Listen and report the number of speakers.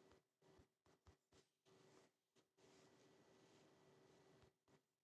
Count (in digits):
0